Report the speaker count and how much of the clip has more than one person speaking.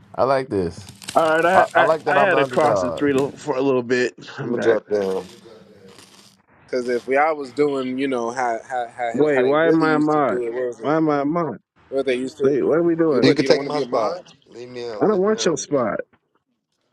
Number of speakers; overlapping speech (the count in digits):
4, about 31%